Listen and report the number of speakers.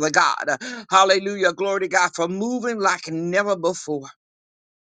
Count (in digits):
1